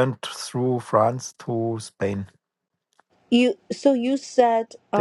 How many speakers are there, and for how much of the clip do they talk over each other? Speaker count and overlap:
two, about 1%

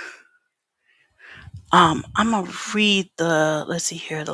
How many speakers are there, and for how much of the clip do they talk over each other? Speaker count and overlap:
one, no overlap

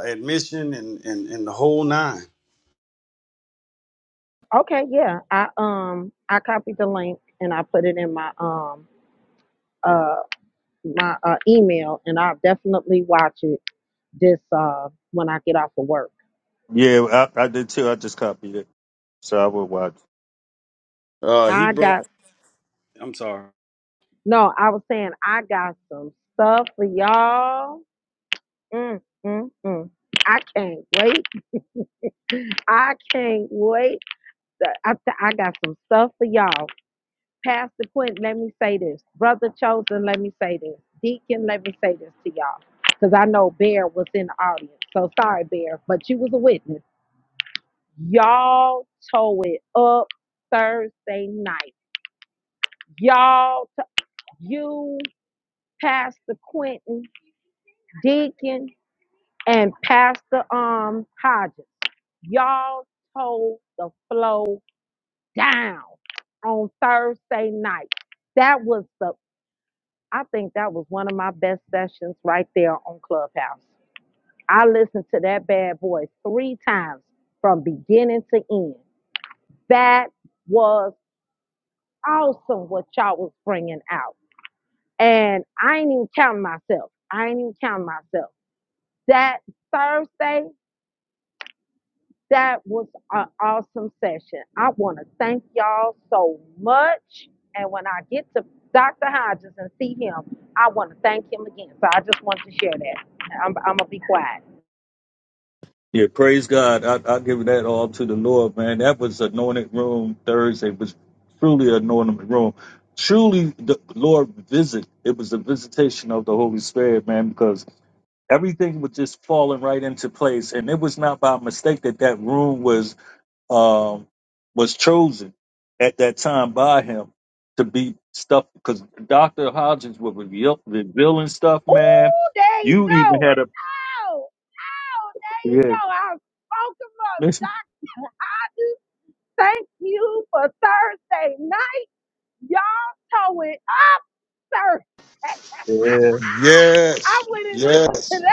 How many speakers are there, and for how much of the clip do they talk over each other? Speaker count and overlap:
four, about 2%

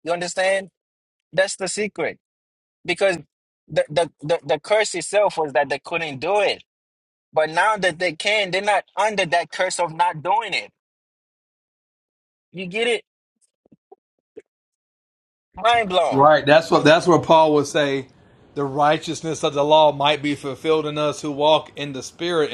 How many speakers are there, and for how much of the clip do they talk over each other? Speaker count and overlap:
two, under 1%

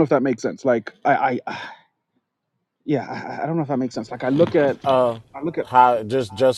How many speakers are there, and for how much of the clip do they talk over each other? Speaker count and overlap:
two, under 1%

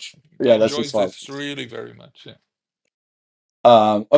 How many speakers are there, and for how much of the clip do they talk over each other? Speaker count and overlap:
two, about 16%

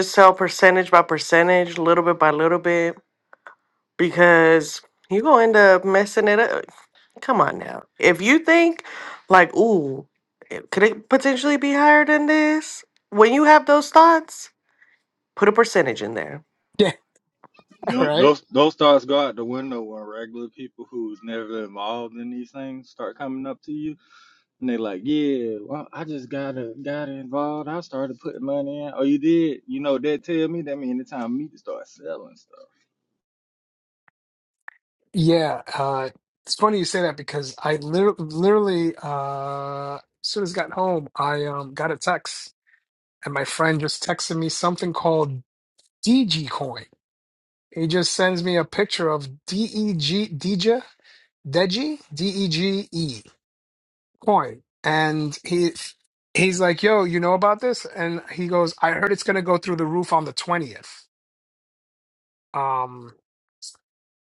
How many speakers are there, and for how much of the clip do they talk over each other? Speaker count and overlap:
three, about 1%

